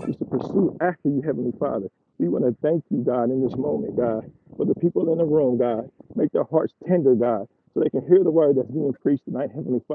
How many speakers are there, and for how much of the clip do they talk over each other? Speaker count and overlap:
one, no overlap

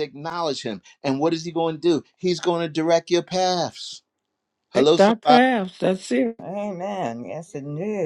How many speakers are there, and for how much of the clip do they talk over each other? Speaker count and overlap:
three, about 8%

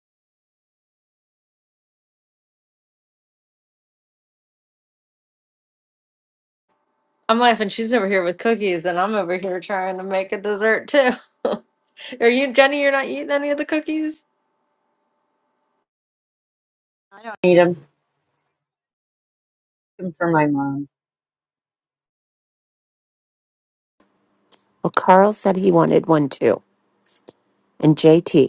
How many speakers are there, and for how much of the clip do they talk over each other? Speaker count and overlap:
three, no overlap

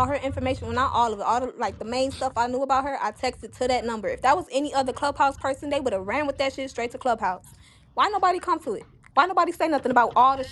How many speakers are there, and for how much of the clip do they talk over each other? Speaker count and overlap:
one, no overlap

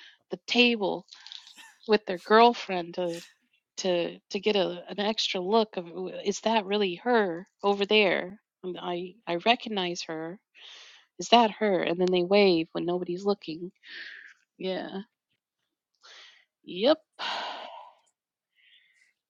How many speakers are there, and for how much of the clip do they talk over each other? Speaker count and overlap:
one, no overlap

